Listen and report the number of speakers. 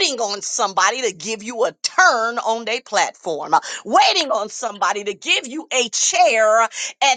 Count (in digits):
1